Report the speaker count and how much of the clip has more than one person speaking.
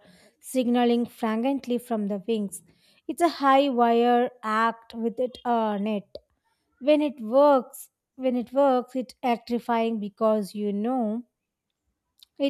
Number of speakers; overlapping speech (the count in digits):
1, no overlap